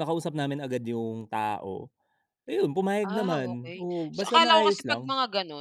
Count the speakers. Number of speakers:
2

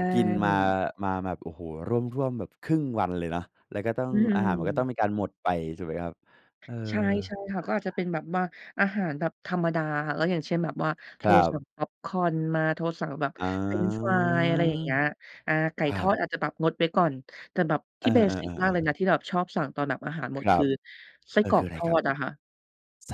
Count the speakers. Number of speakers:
2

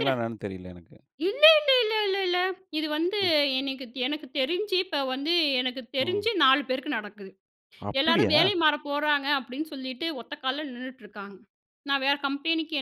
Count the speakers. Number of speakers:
2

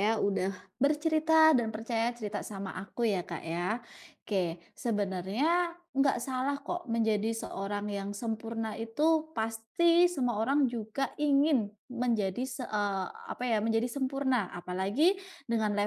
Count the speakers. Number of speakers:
1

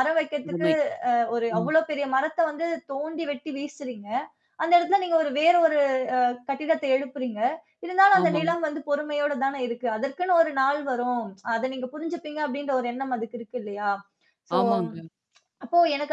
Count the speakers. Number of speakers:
2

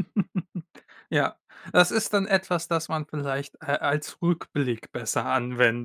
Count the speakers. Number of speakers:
1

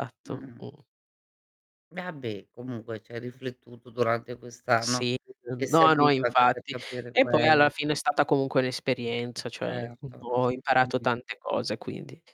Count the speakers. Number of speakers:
2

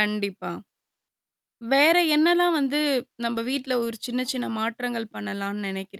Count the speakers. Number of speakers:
1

